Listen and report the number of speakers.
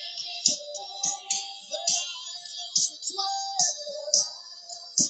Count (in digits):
0